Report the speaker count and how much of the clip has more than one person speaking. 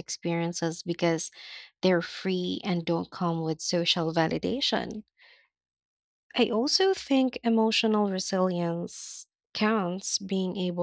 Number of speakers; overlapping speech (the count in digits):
1, no overlap